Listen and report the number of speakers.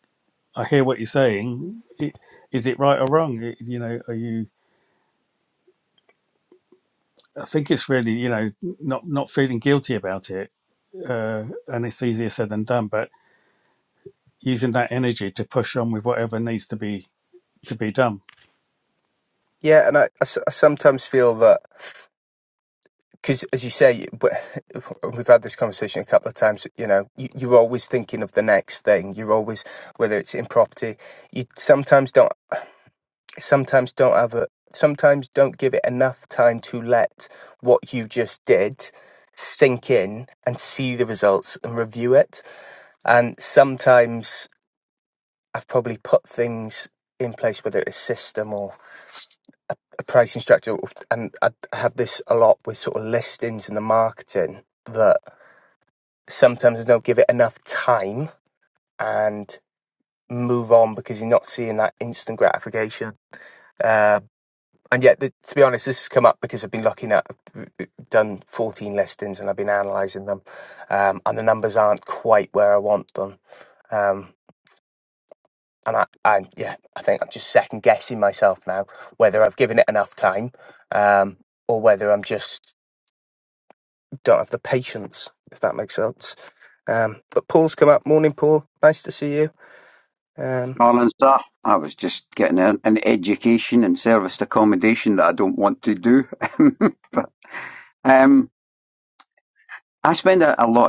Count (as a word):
three